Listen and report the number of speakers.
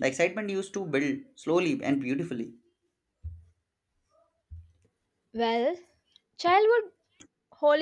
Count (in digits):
2